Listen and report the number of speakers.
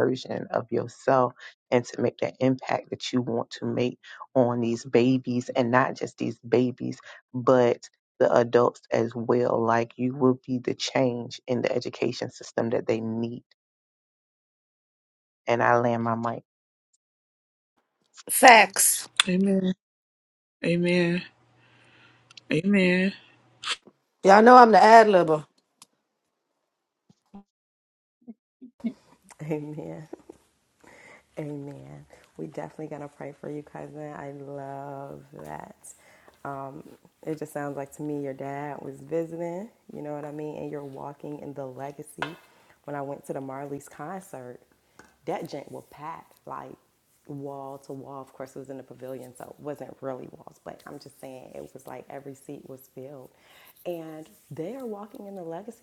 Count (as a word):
four